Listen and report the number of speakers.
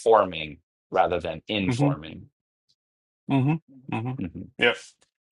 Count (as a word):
two